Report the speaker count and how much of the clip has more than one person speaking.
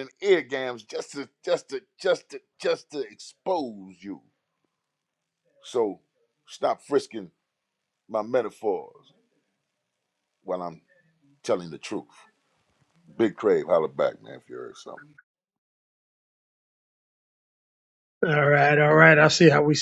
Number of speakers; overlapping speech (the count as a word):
two, no overlap